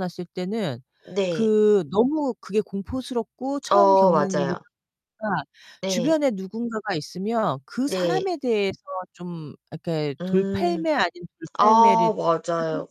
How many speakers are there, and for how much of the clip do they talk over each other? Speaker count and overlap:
2, about 24%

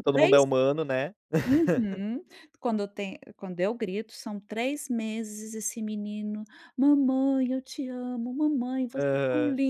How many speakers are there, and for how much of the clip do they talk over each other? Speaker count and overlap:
2, about 10%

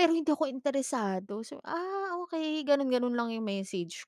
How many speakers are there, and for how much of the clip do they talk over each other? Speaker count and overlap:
1, no overlap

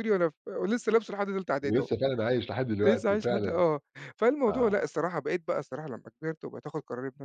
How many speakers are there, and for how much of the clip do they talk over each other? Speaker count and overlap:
2, about 18%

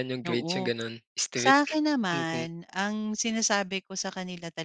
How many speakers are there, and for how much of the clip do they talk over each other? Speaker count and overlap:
2, about 26%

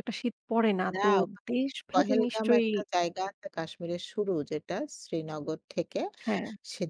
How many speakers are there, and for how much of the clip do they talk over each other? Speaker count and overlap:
2, about 15%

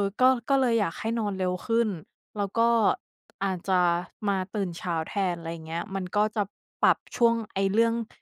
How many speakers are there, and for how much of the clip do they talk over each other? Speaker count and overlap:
1, no overlap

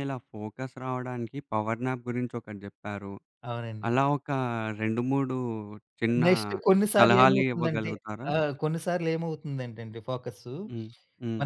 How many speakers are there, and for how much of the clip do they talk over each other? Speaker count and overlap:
2, about 11%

